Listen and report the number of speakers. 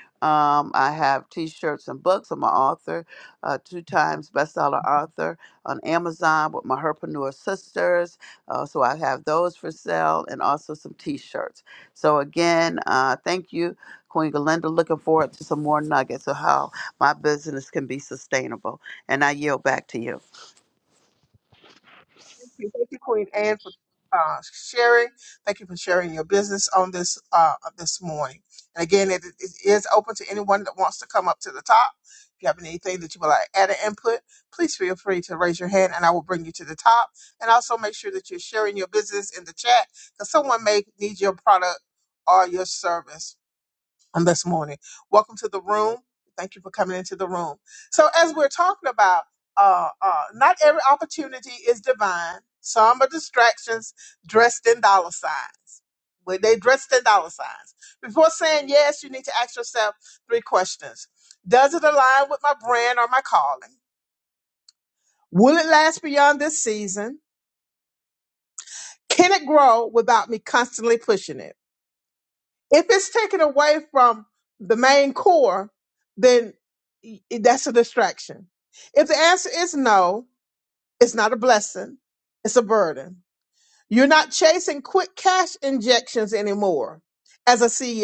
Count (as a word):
two